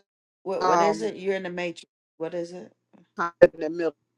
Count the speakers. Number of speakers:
2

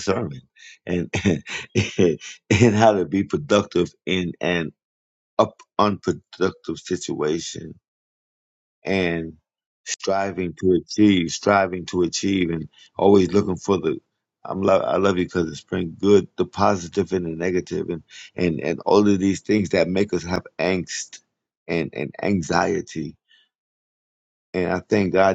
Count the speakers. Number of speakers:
1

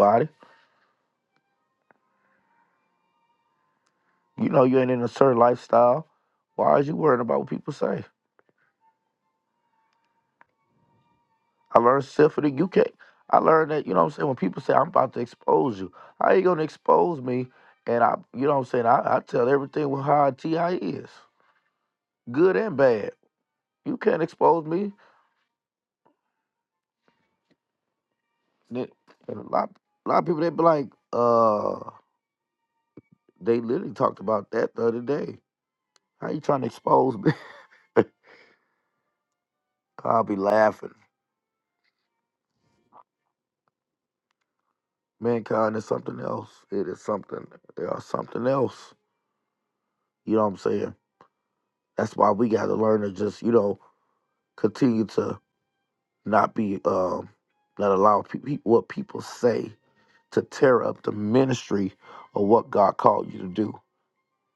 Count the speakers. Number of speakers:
1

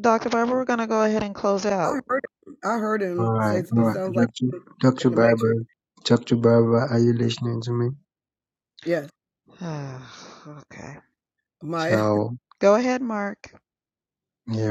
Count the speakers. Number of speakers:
3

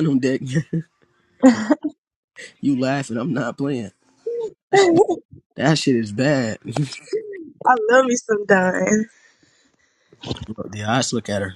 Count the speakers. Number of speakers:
2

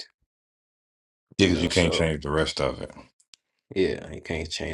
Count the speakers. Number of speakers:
2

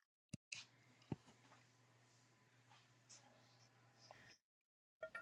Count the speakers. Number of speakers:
0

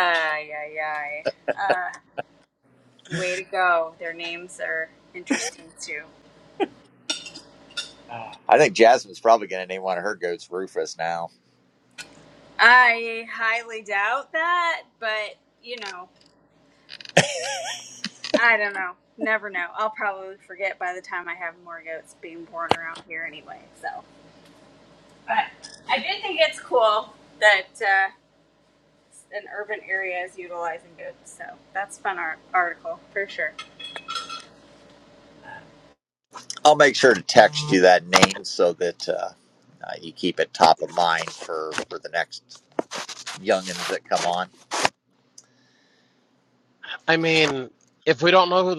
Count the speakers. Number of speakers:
3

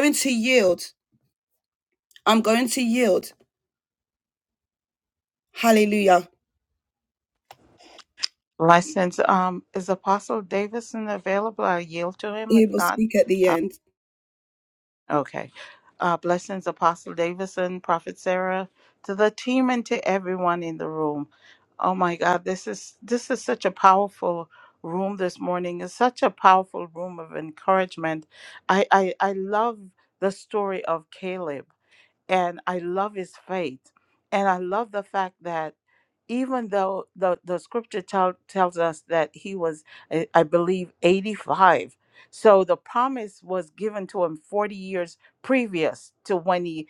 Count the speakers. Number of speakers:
2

